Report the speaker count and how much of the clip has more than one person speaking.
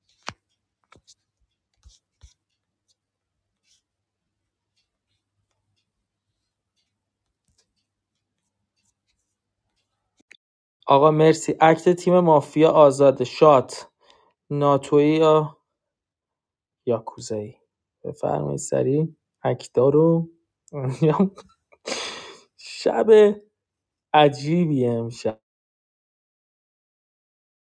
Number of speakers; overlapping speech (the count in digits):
1, no overlap